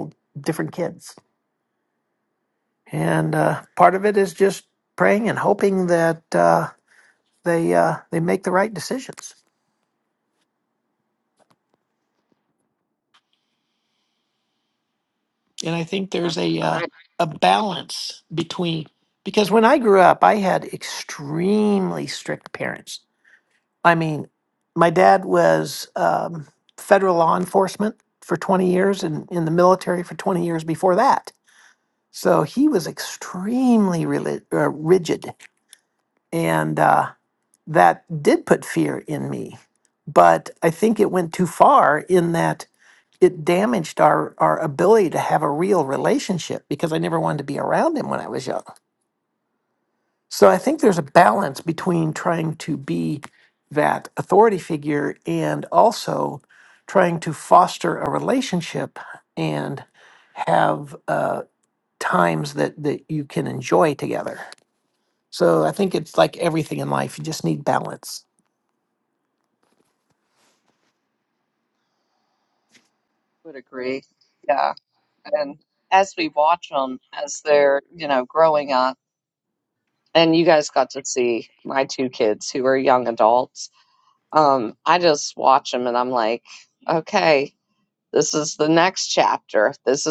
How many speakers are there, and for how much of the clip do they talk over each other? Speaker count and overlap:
two, about 1%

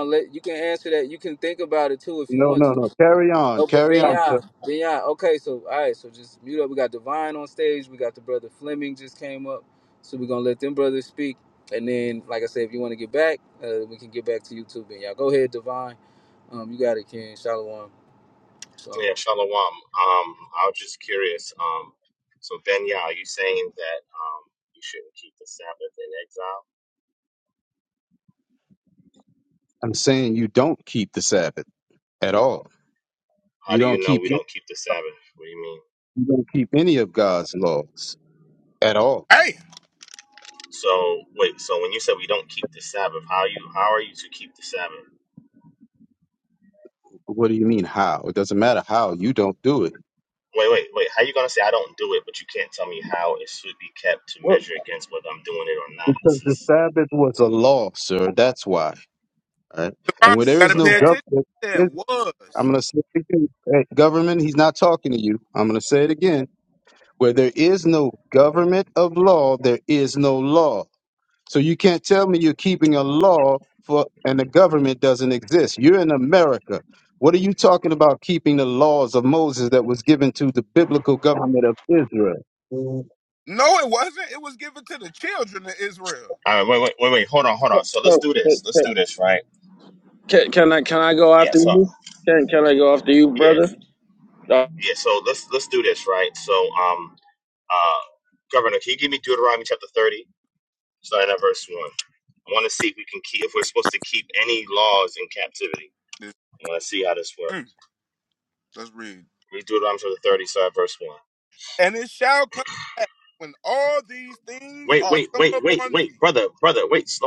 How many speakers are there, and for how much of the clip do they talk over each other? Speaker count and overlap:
five, about 6%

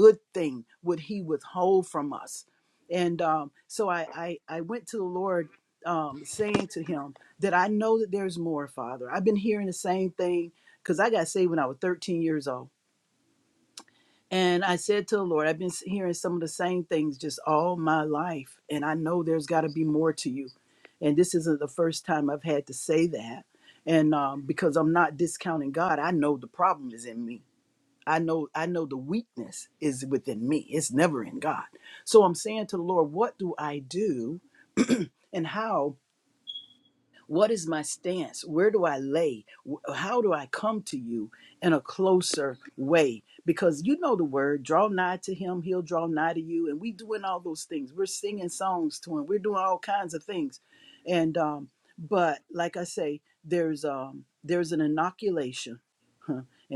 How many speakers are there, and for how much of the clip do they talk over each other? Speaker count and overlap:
one, no overlap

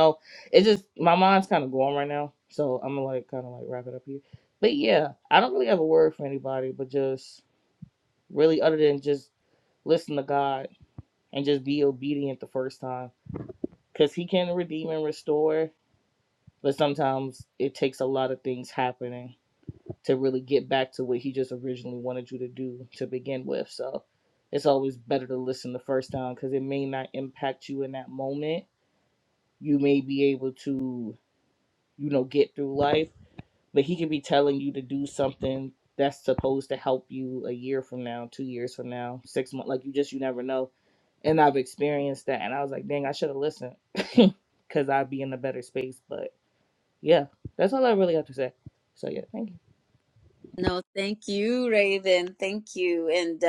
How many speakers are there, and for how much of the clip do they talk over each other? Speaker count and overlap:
two, no overlap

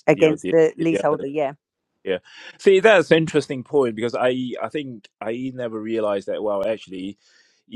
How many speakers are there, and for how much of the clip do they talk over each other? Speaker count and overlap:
two, about 10%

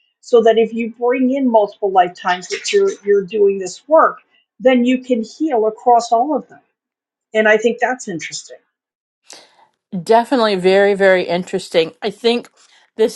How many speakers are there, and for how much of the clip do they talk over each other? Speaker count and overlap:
two, no overlap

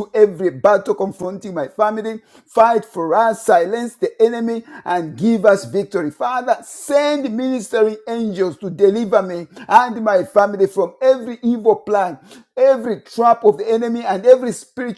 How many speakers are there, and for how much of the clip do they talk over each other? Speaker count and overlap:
one, no overlap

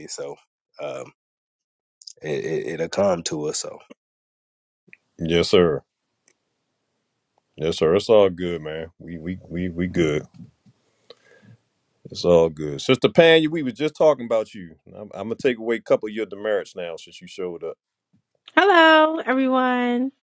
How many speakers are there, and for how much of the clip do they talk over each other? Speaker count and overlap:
three, no overlap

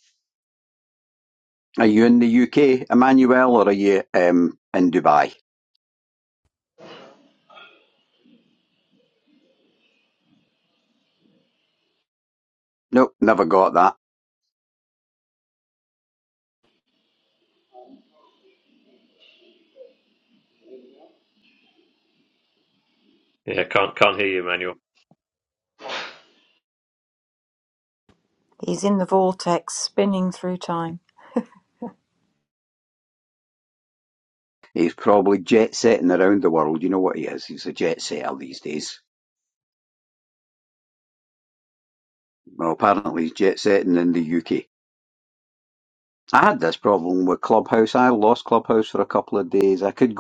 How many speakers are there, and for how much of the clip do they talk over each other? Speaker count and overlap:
three, no overlap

